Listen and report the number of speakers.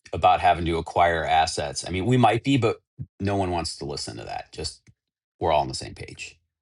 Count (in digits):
1